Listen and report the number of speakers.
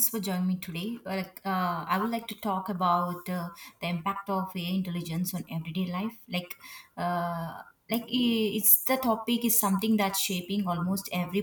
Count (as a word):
one